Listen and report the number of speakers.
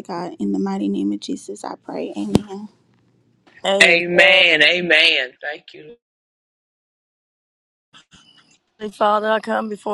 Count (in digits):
3